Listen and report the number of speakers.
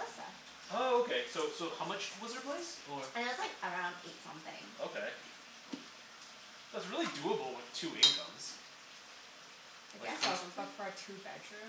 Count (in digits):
2